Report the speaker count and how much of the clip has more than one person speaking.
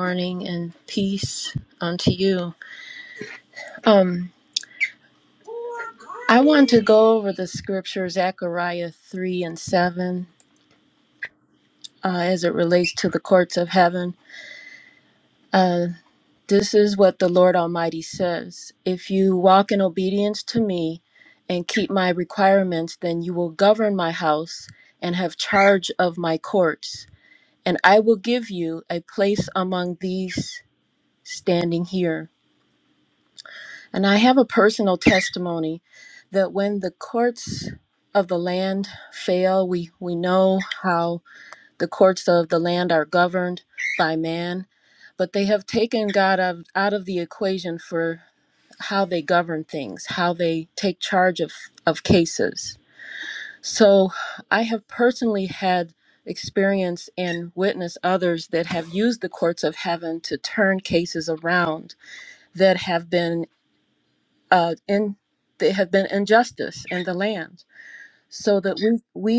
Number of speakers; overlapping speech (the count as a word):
one, no overlap